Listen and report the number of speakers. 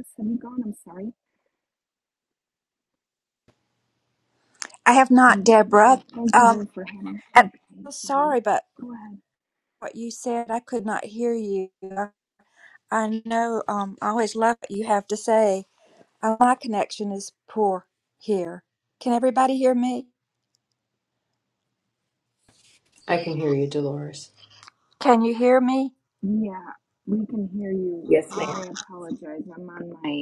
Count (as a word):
three